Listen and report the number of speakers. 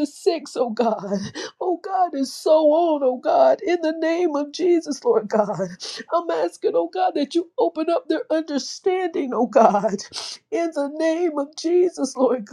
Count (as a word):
one